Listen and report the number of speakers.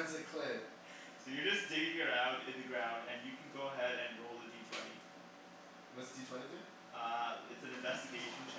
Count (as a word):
two